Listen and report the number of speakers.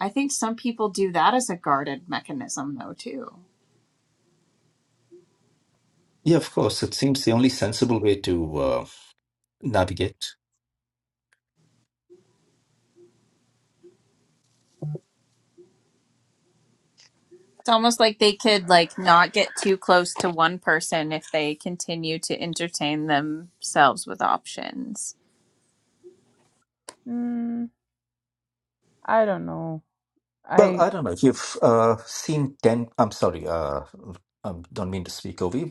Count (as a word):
three